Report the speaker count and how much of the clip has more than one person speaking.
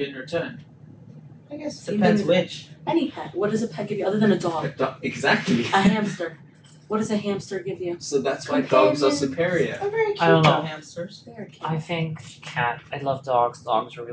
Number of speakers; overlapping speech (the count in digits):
4, about 23%